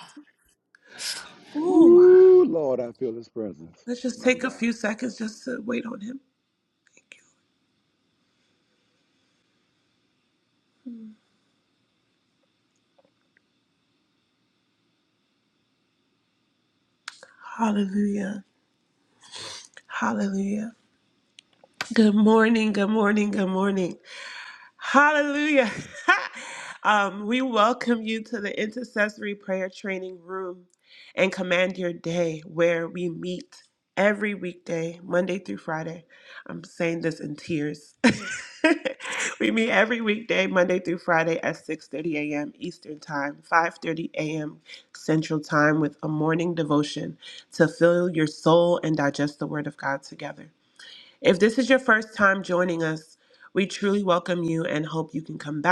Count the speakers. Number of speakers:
2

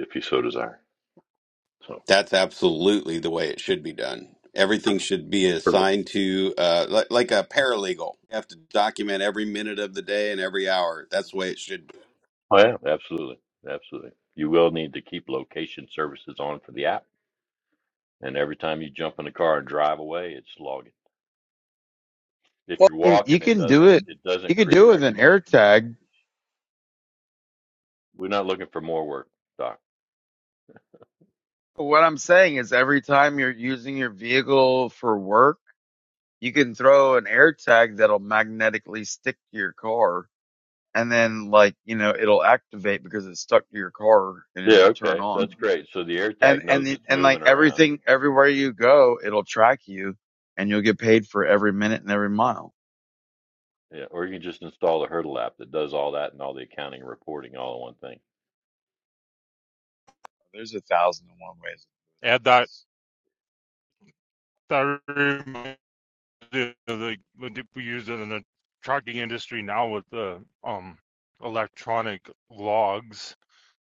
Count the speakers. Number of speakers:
4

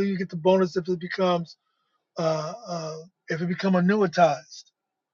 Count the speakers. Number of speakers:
1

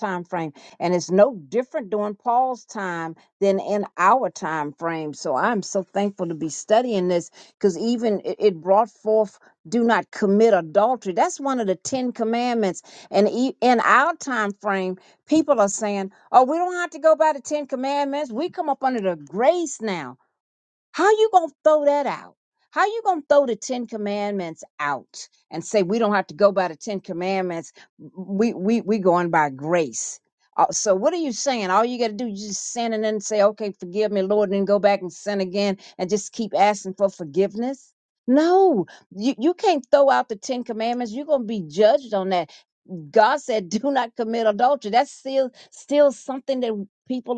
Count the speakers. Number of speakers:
1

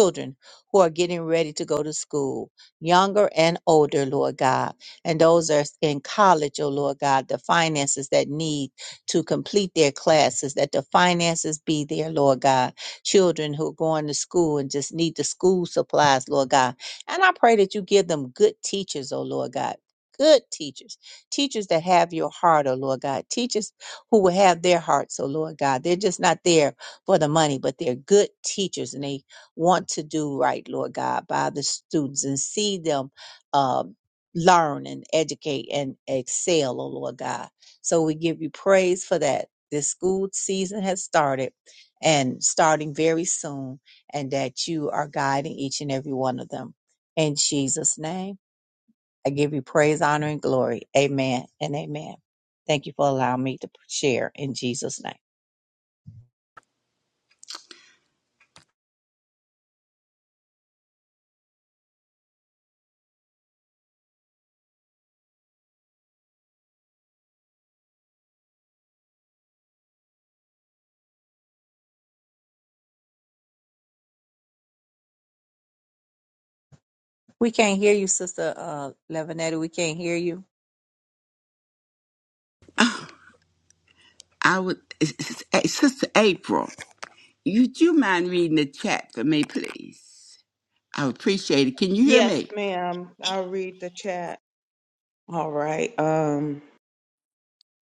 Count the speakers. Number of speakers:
3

